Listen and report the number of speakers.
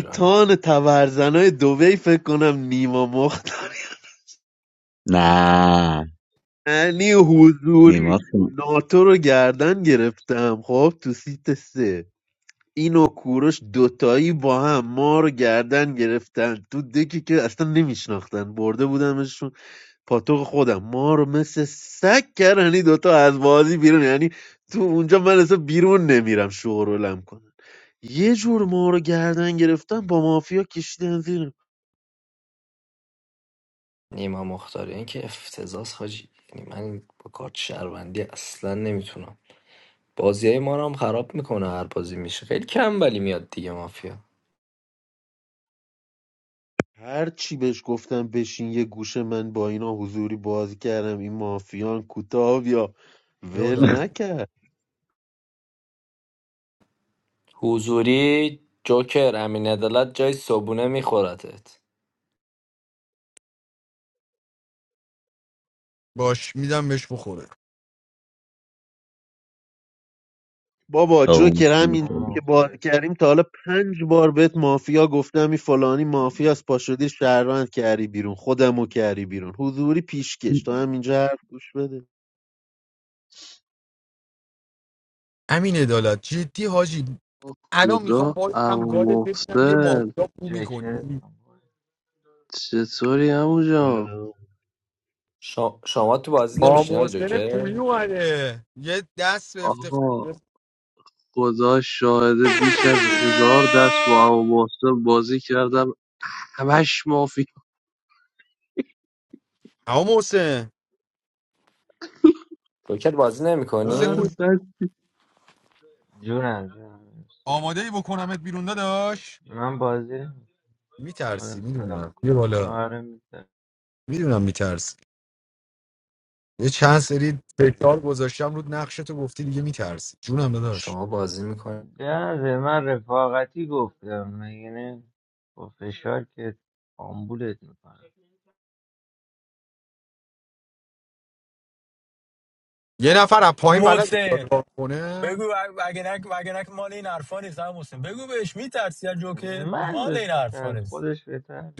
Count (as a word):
seven